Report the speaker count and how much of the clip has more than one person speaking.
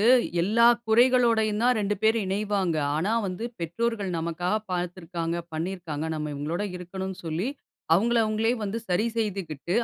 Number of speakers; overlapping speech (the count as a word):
one, no overlap